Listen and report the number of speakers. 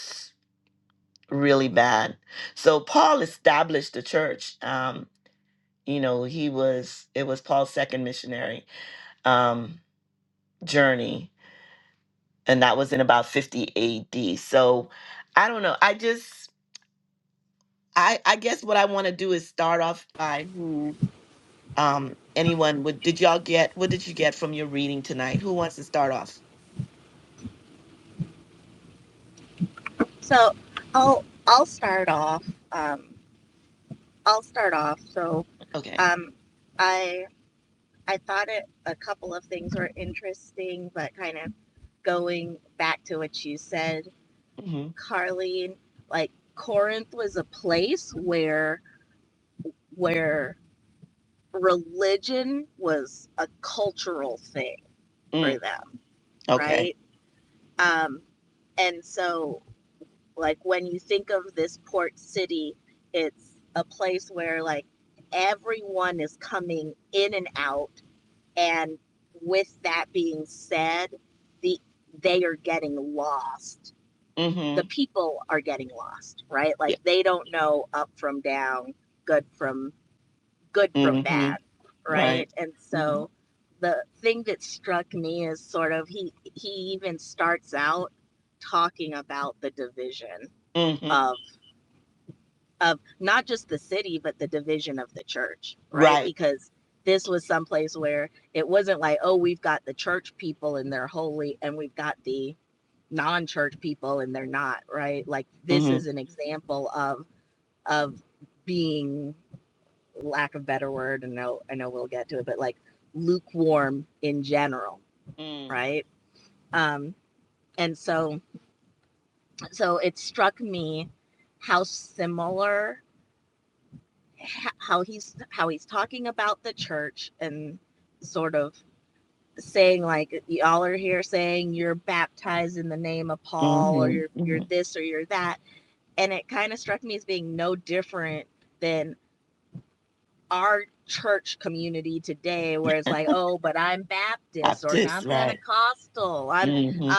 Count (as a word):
two